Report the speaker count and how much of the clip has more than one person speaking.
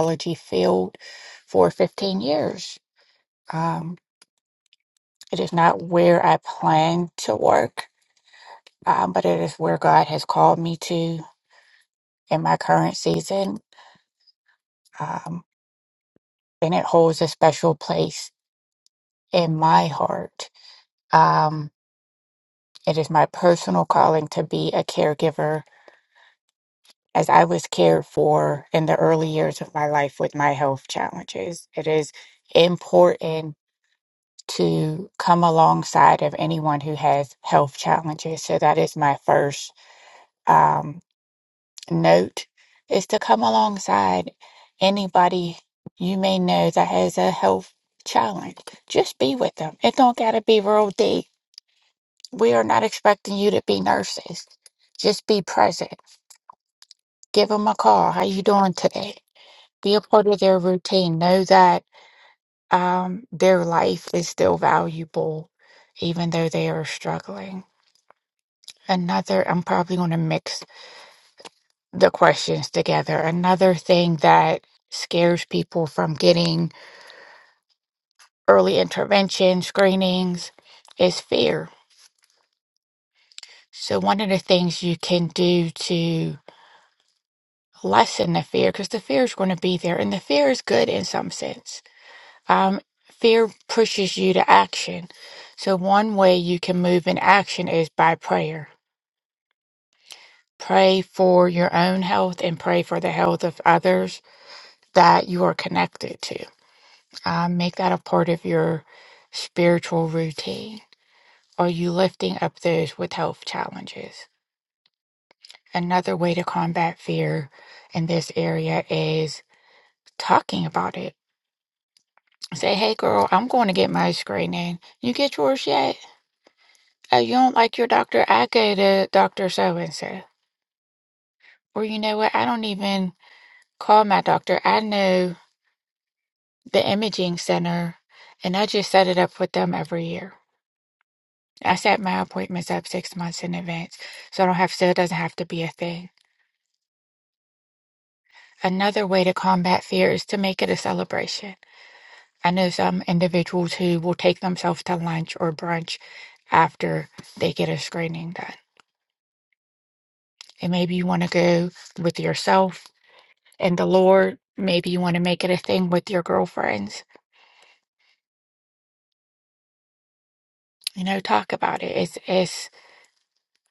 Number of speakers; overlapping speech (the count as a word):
one, no overlap